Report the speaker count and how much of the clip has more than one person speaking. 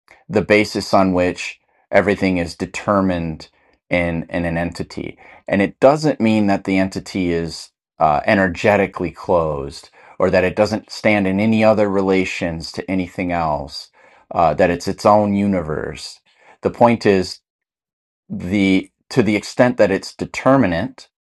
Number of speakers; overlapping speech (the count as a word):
one, no overlap